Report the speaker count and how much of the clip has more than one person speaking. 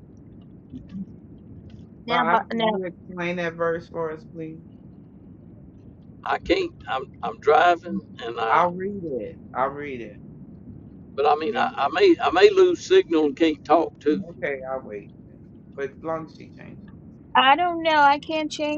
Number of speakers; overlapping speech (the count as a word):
three, about 7%